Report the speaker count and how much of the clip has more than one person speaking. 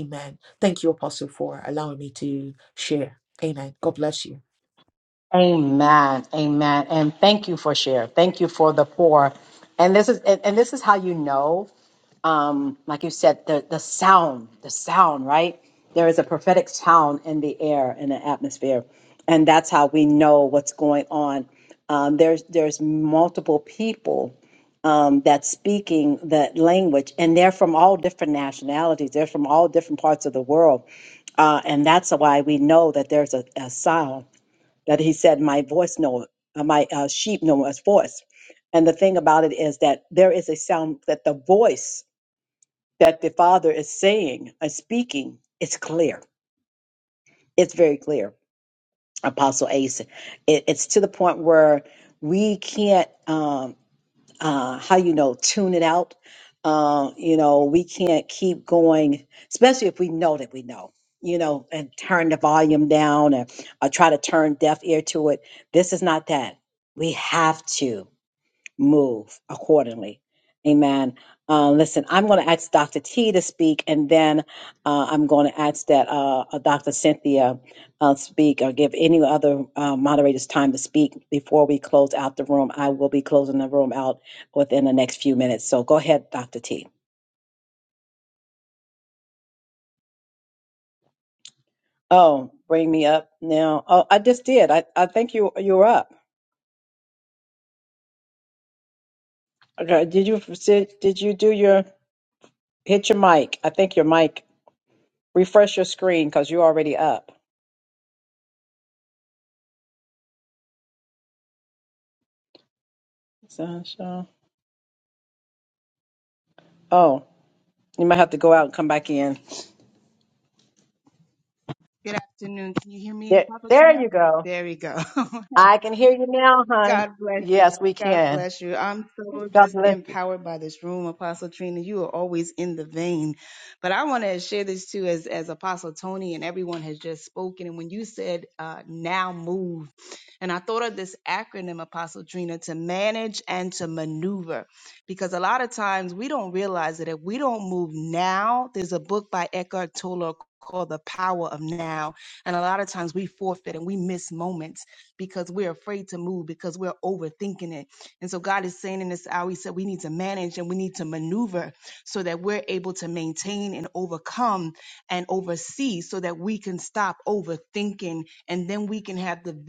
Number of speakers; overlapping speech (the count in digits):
3, about 1%